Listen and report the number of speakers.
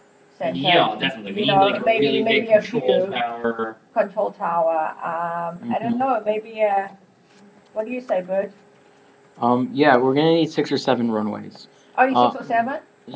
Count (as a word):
three